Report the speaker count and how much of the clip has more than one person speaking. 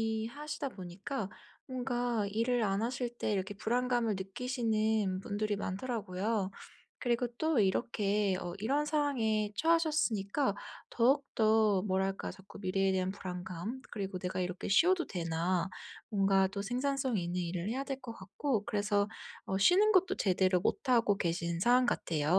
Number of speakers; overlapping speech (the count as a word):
one, no overlap